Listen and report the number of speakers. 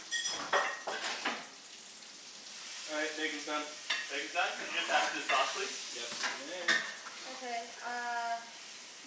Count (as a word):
three